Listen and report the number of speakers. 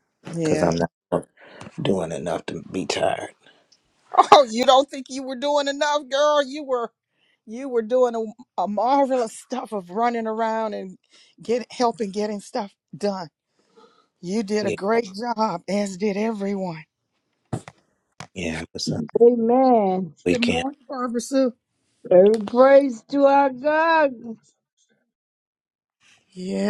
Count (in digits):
3